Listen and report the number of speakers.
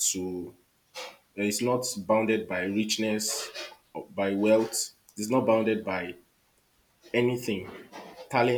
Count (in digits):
1